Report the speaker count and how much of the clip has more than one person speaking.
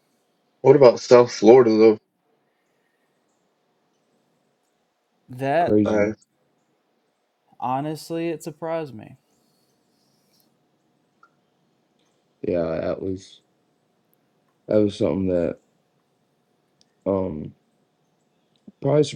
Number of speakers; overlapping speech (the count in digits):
3, about 2%